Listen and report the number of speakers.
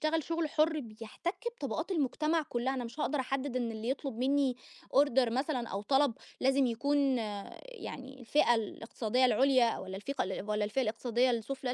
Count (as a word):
one